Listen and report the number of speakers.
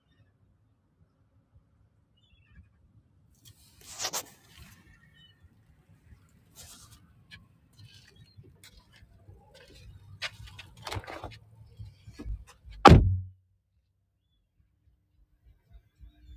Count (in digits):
0